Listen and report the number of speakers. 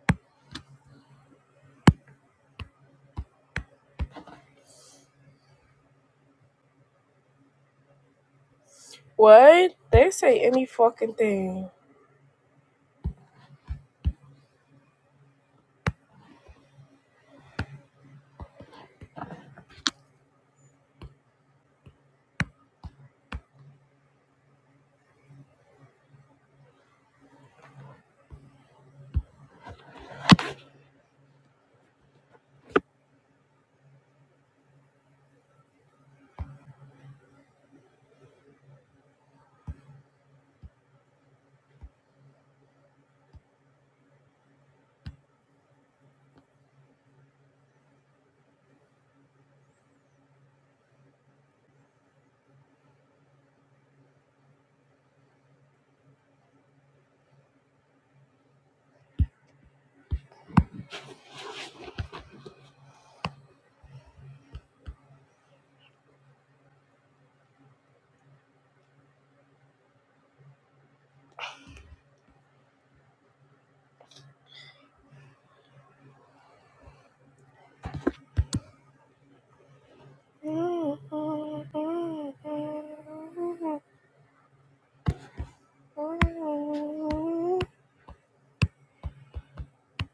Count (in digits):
1